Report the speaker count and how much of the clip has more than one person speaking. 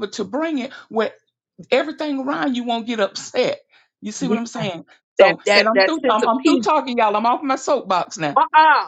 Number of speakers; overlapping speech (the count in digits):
2, about 18%